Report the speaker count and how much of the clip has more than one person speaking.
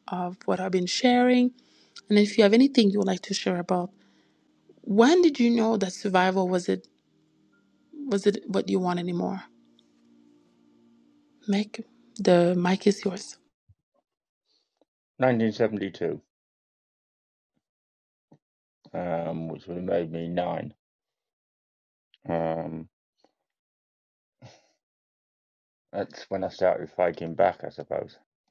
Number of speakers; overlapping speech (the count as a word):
two, no overlap